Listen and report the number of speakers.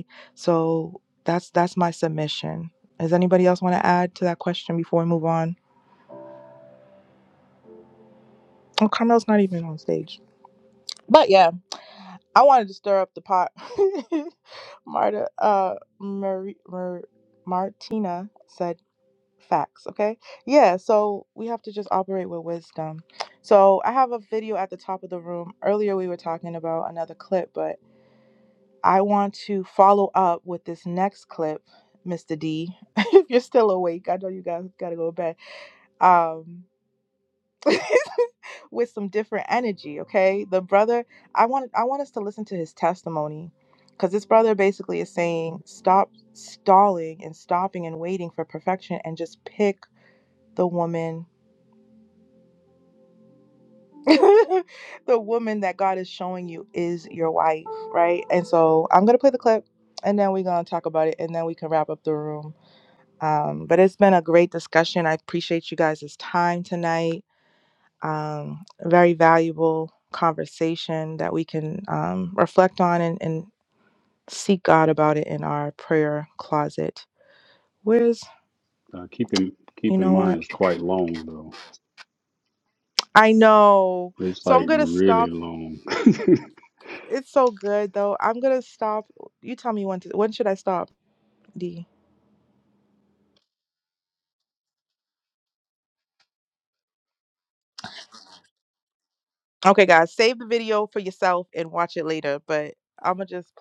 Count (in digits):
2